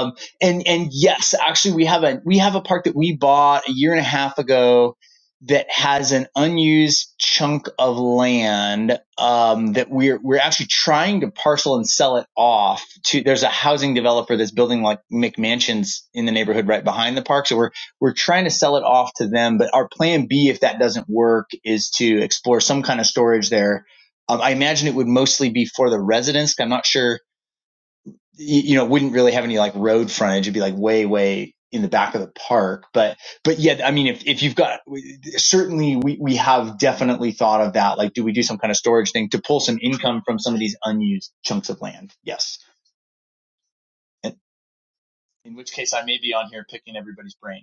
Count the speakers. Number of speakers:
1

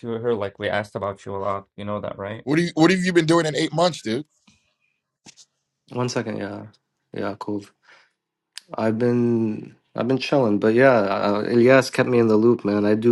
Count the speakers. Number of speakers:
3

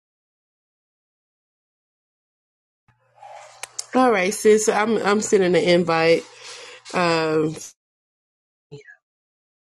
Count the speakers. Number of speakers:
1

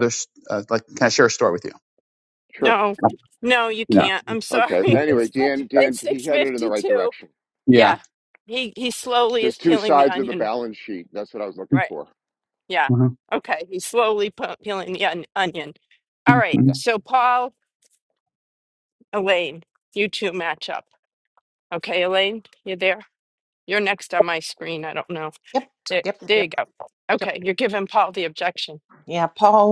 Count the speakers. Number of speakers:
4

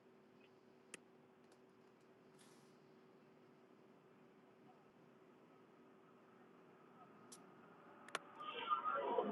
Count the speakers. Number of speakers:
0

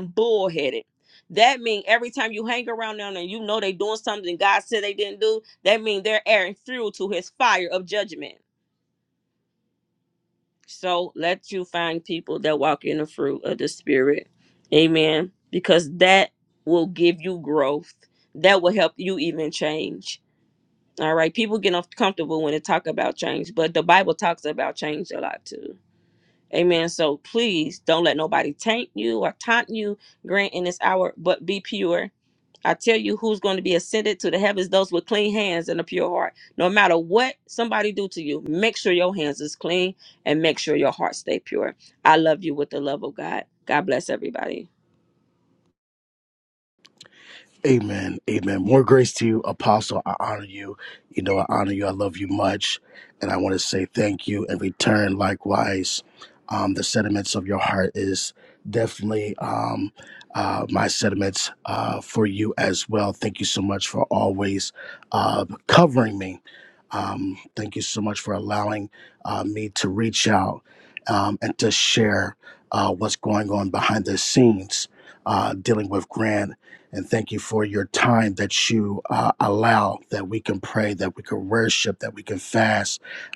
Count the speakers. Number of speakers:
2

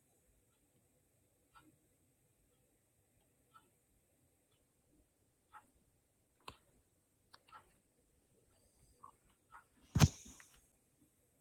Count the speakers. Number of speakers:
0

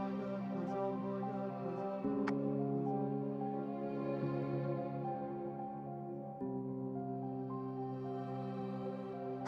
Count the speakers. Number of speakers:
0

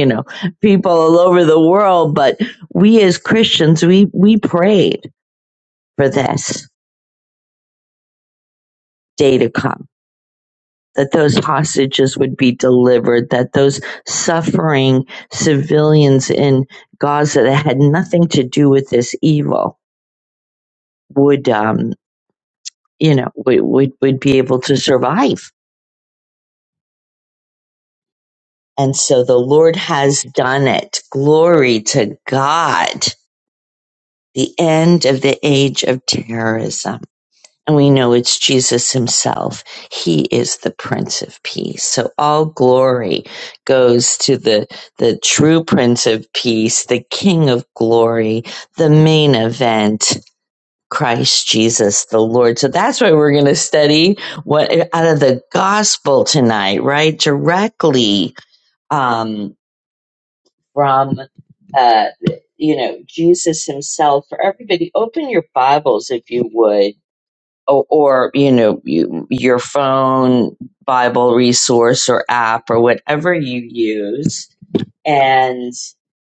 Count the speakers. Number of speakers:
1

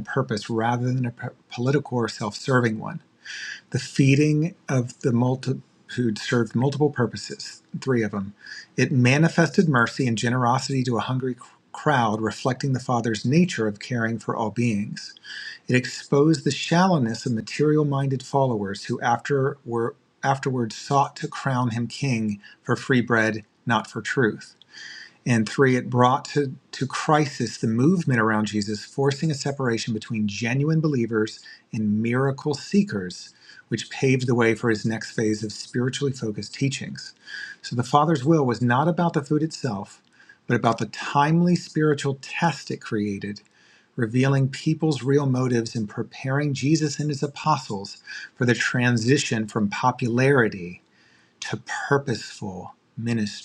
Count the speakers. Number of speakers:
1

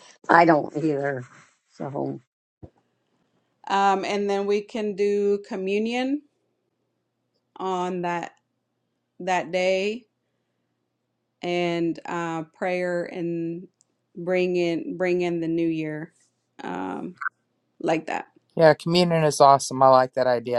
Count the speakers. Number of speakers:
3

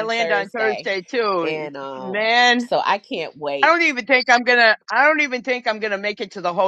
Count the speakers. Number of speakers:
2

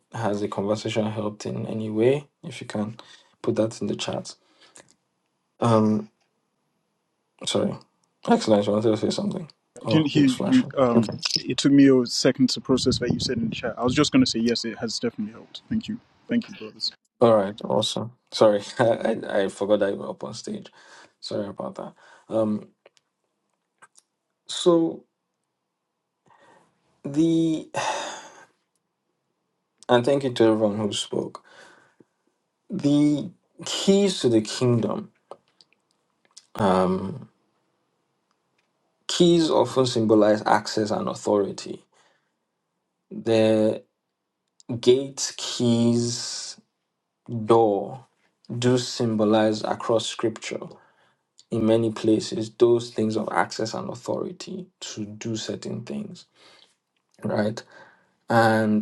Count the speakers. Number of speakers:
2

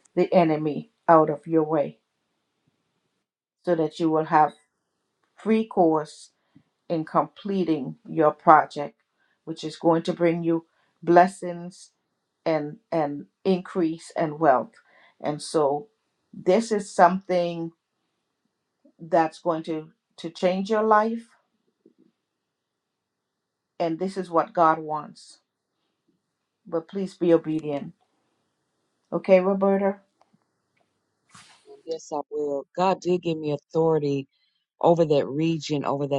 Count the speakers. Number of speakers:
2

